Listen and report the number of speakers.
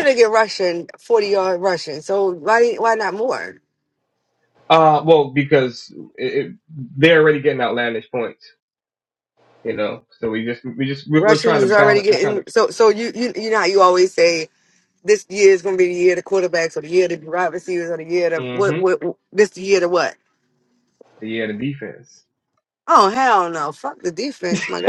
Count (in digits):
2